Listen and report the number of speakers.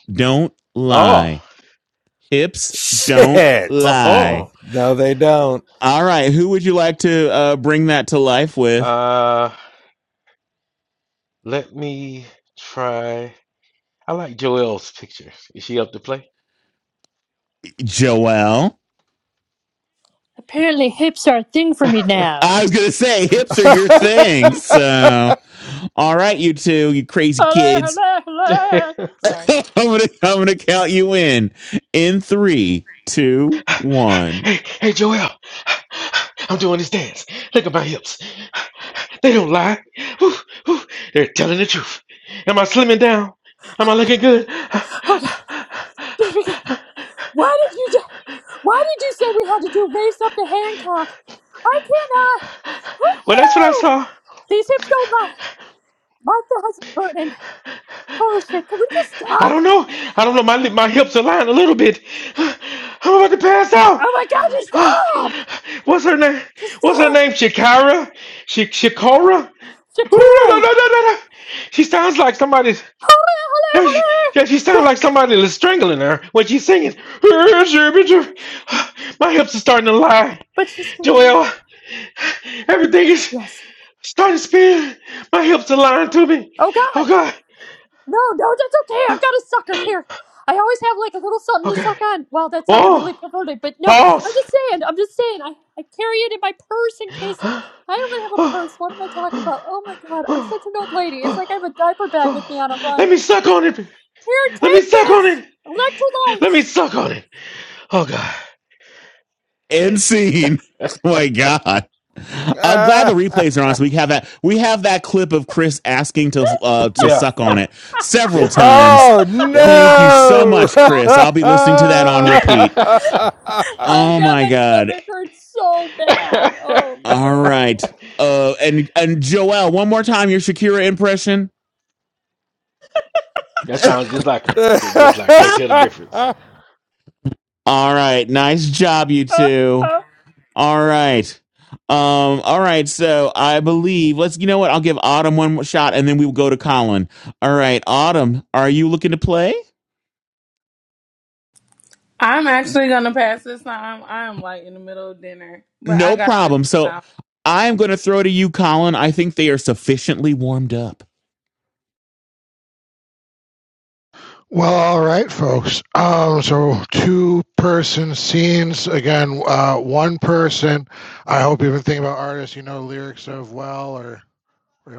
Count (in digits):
6